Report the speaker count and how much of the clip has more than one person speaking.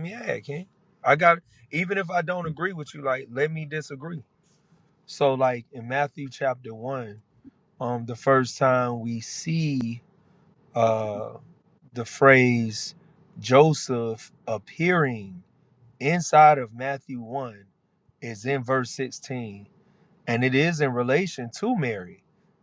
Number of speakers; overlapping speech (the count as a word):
one, no overlap